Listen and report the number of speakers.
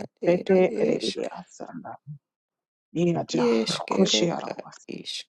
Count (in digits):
2